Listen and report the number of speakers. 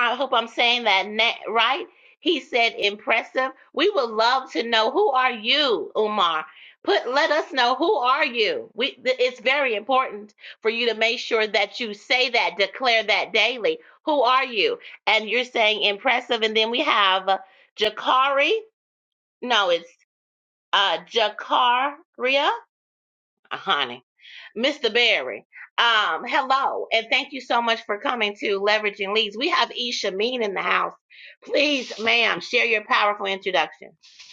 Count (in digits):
1